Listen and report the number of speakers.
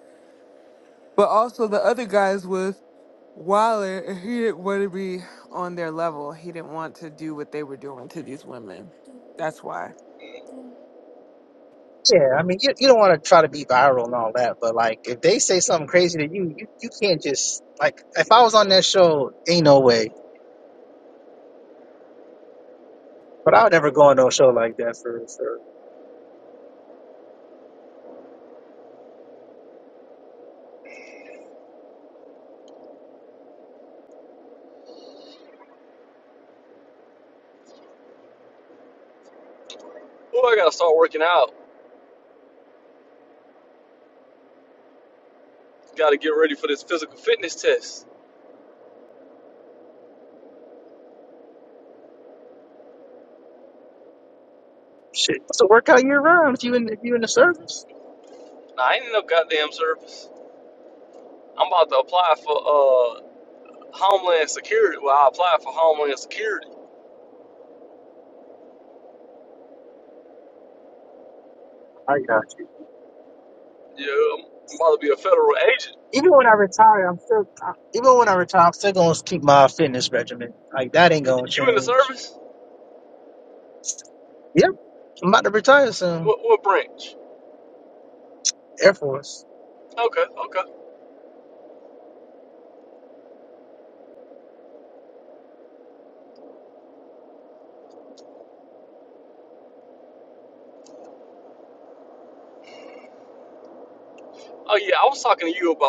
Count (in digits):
3